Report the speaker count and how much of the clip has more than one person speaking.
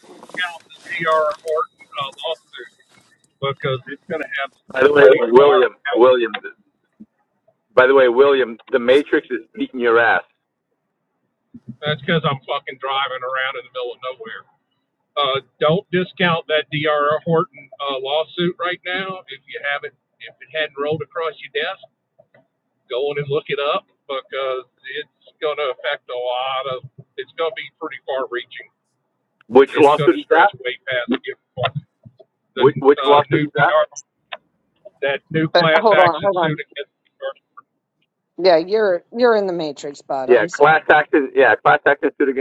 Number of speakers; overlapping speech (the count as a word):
three, about 10%